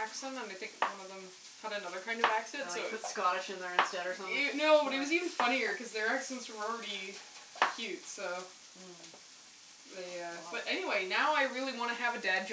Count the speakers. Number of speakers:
two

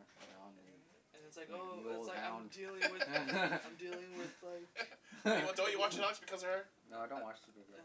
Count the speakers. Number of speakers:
three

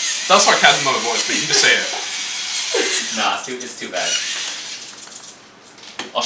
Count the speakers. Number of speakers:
two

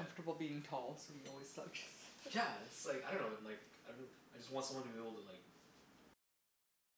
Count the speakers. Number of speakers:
two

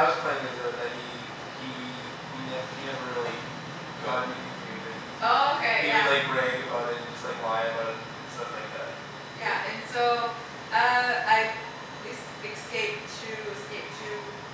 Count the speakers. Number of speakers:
two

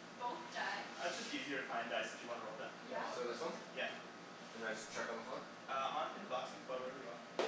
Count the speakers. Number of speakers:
three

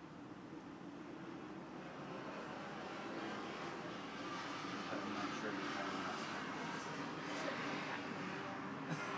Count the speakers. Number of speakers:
two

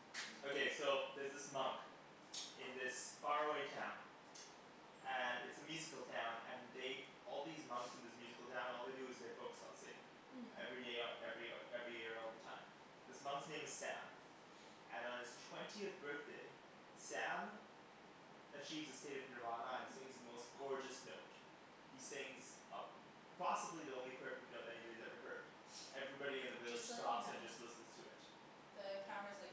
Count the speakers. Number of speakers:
two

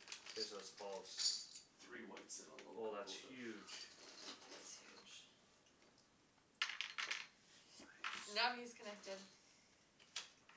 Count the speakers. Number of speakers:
three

